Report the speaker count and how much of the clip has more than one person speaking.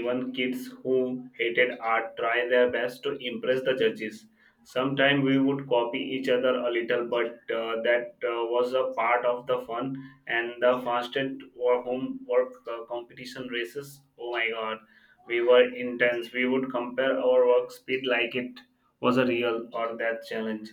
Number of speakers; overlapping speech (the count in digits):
1, no overlap